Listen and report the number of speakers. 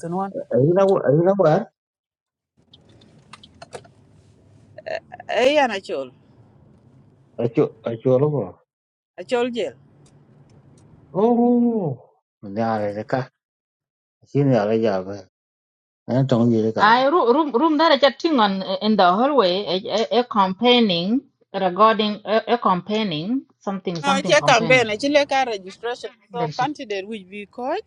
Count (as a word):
three